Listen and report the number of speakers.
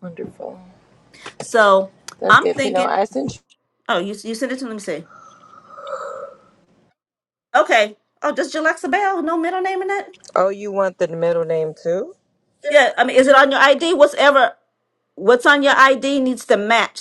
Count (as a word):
two